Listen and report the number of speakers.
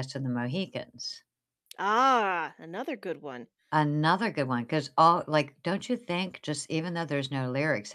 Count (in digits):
2